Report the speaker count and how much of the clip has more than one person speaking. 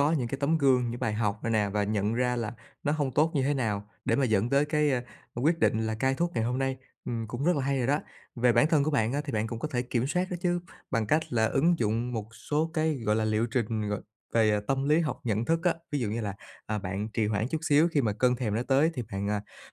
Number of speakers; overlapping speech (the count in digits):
1, no overlap